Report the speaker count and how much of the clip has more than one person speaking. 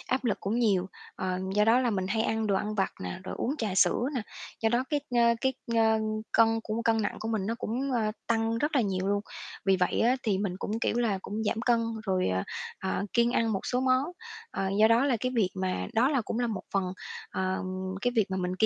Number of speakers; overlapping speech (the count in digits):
1, no overlap